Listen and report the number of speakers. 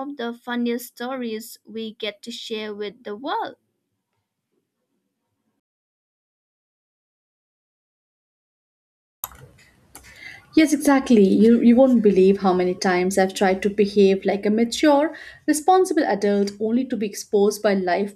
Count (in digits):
2